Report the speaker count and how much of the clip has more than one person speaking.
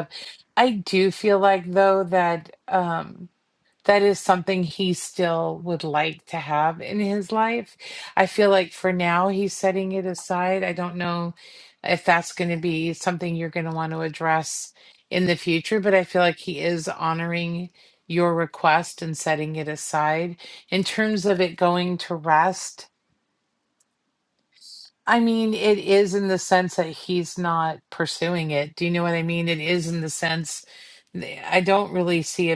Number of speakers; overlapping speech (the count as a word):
one, no overlap